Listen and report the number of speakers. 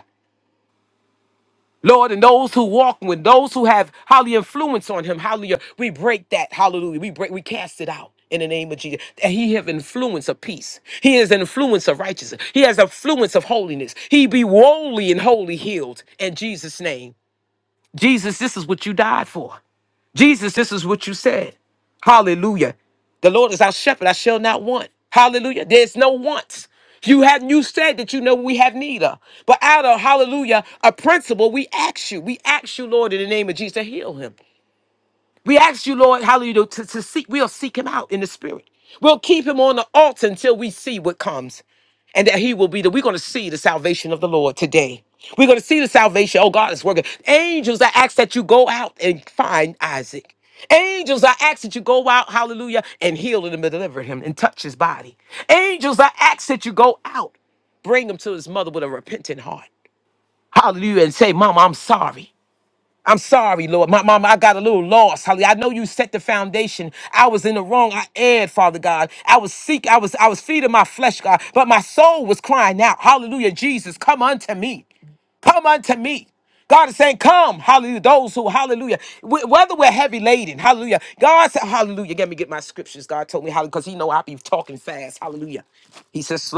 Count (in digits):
1